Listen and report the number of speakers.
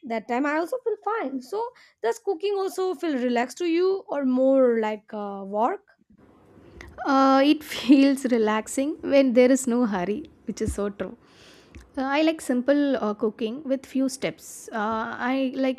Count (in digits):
2